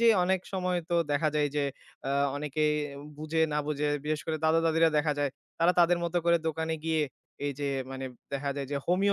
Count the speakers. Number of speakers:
one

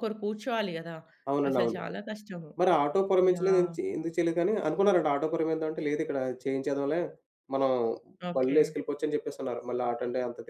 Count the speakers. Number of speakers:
two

